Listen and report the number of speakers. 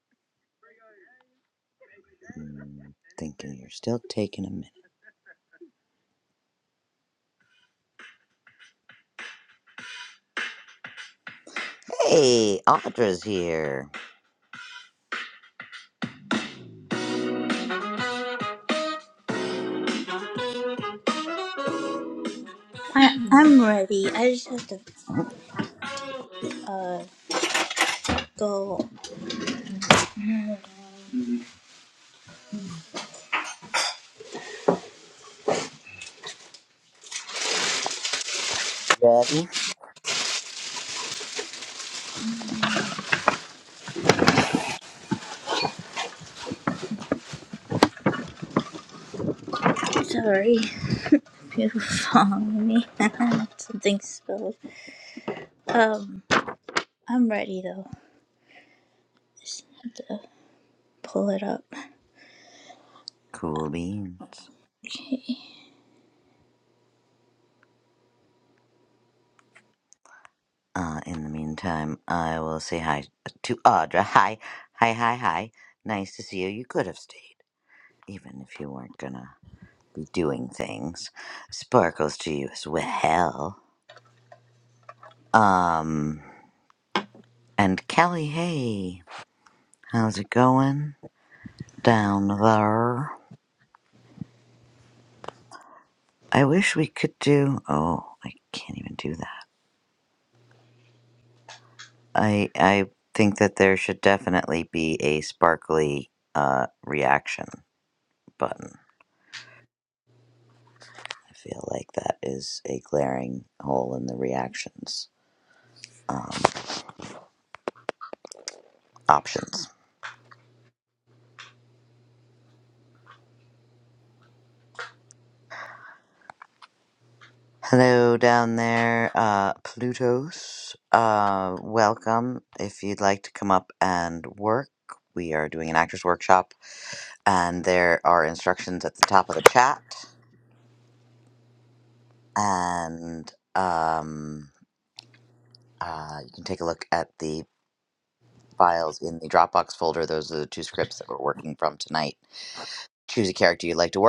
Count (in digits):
2